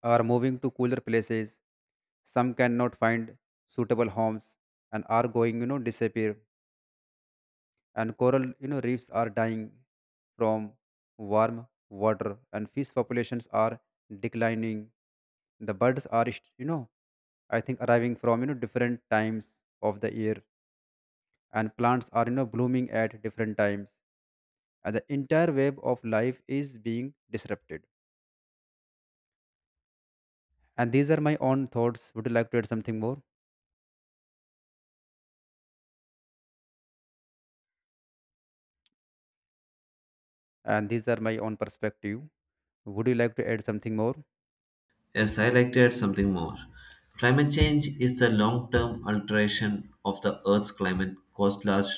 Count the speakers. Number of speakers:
two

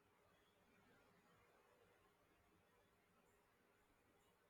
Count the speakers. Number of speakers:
zero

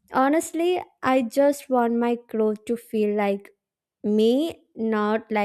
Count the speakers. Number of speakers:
one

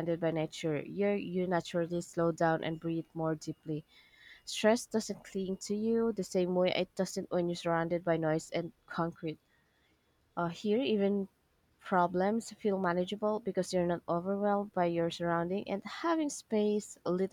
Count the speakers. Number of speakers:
one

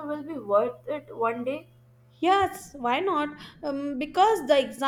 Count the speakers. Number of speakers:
two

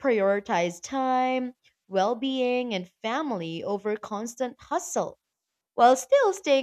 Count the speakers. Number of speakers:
one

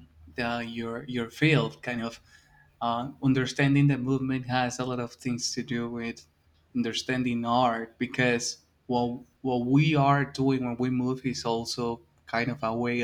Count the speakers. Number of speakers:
one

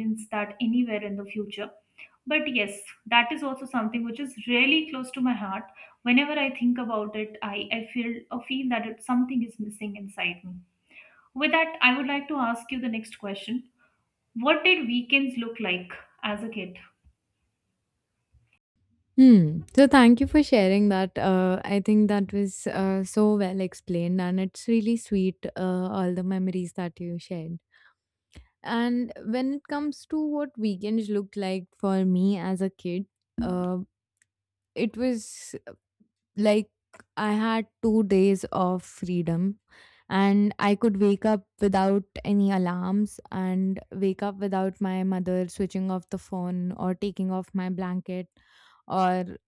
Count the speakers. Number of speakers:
two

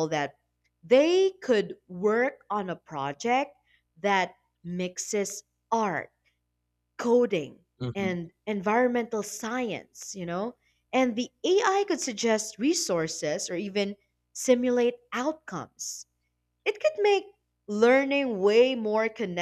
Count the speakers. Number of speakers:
one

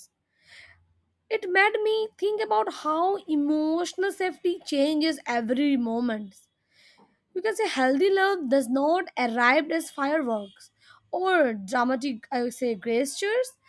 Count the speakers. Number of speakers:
one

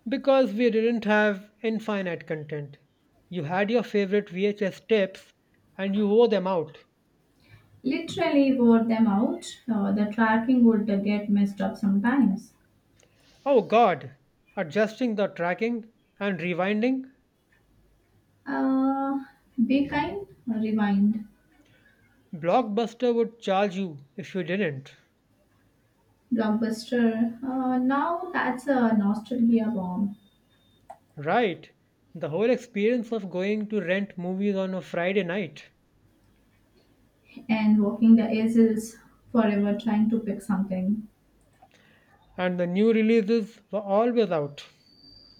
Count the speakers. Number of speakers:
two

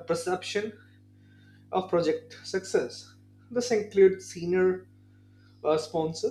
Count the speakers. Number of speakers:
one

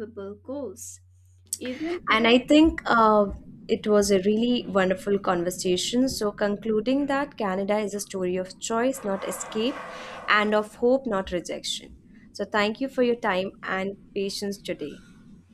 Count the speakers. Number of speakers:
two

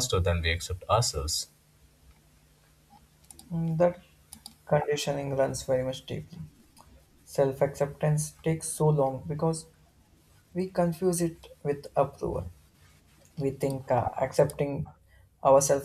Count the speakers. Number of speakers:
two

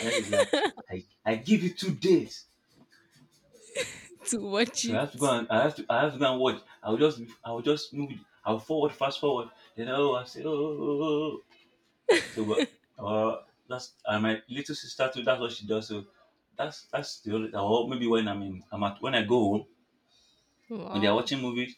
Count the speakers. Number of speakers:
two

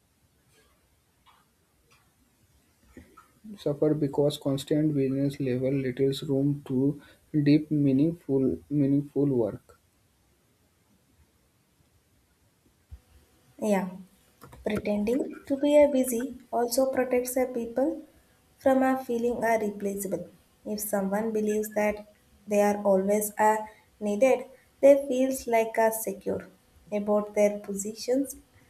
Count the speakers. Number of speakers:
two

